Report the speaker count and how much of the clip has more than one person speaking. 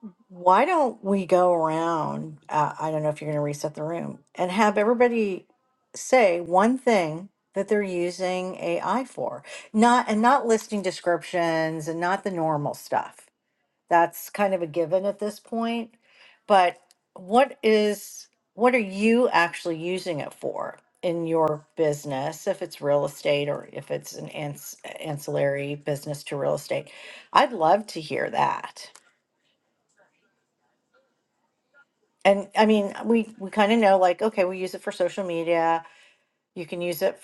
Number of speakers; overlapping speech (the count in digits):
1, no overlap